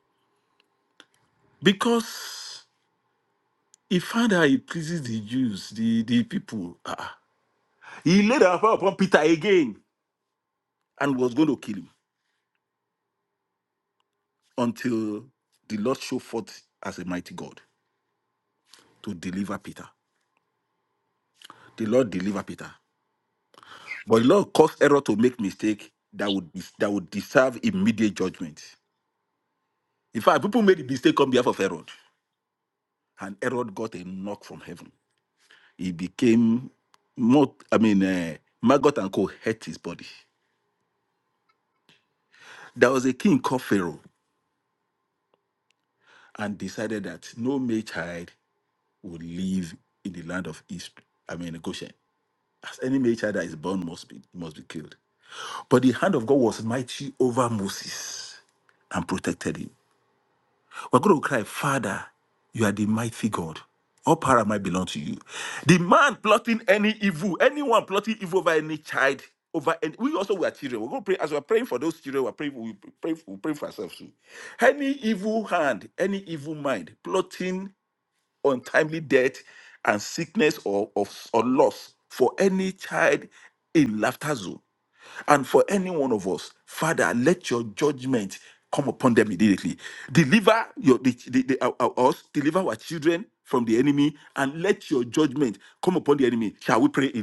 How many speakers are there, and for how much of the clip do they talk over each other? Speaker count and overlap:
one, no overlap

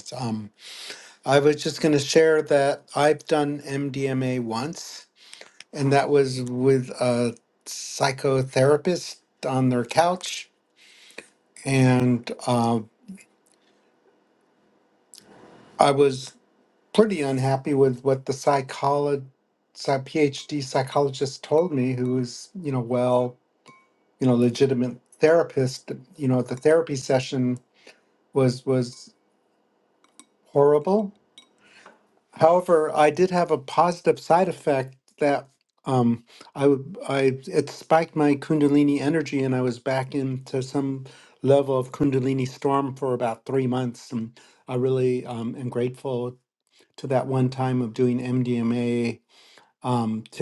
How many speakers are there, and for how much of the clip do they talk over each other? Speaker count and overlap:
one, no overlap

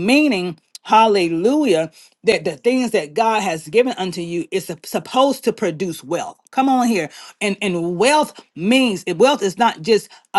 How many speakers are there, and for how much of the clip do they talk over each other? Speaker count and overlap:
one, no overlap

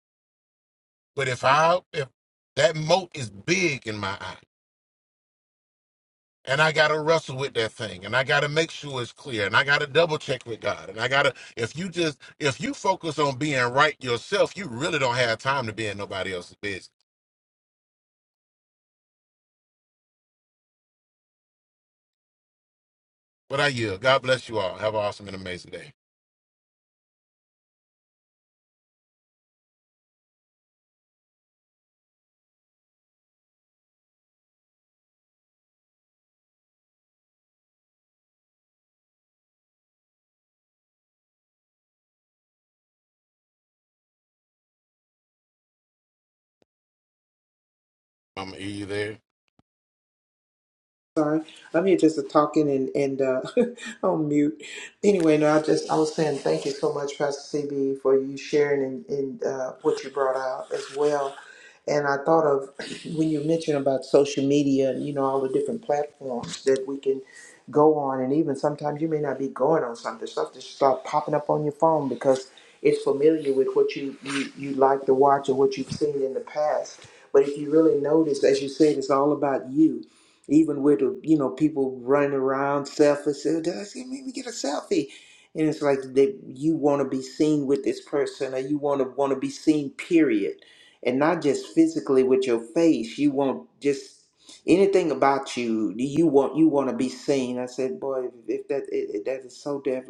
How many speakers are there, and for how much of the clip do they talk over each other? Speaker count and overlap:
two, no overlap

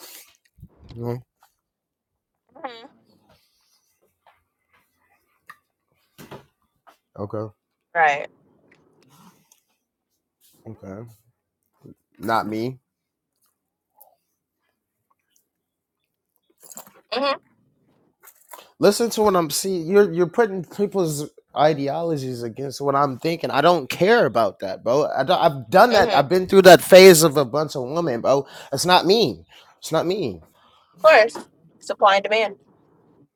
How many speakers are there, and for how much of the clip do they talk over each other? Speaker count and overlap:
two, about 1%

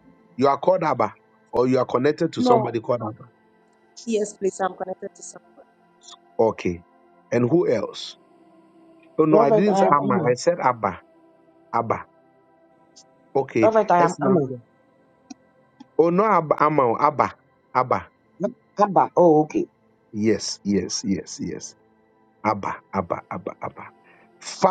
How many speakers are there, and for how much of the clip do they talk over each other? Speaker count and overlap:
three, about 9%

